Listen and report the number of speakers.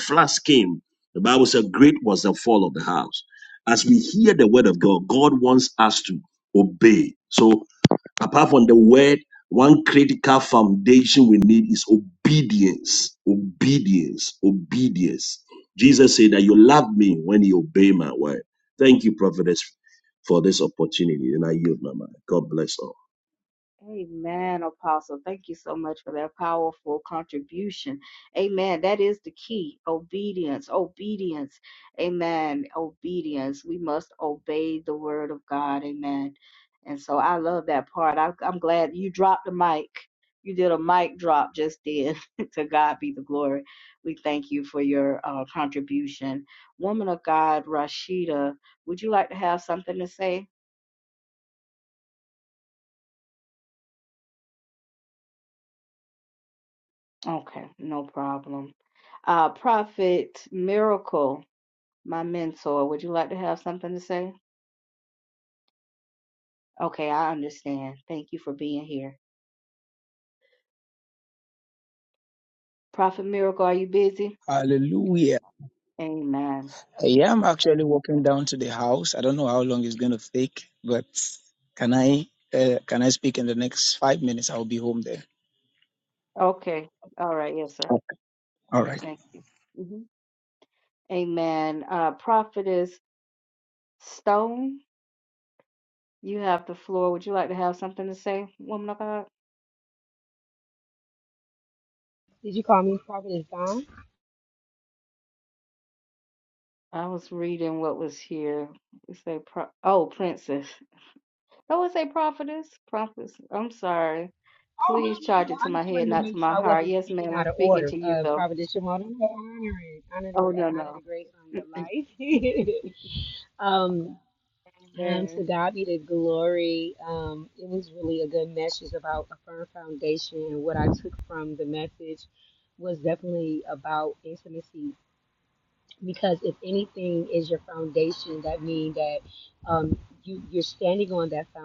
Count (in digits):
4